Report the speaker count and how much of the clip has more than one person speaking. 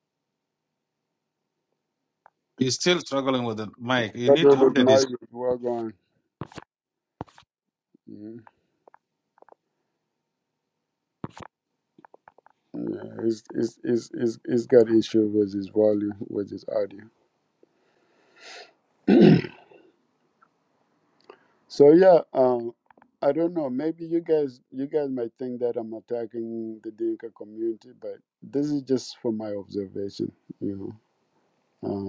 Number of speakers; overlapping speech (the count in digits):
2, about 2%